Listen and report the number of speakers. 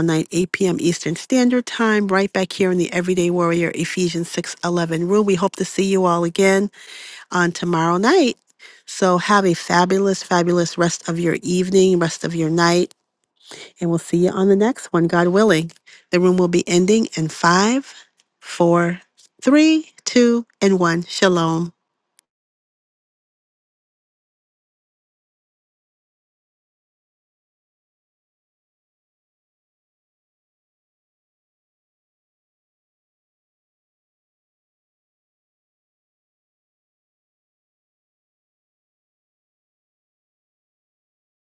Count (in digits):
1